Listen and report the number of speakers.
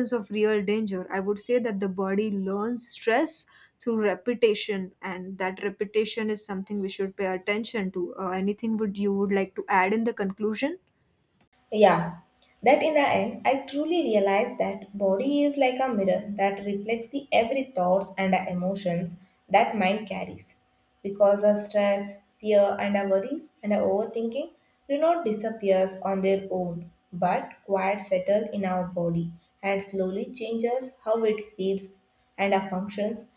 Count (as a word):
two